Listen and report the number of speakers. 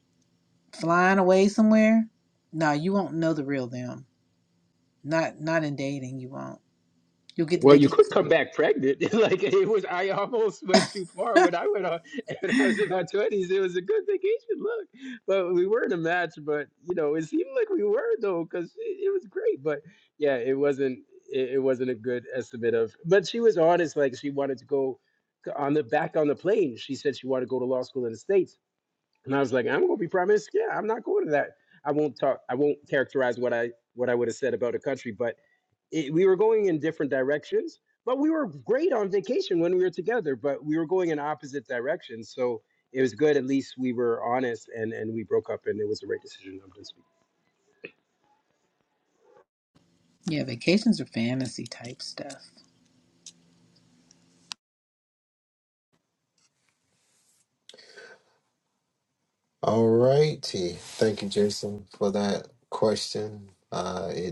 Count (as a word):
three